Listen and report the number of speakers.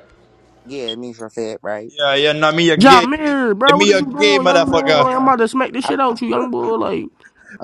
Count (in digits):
3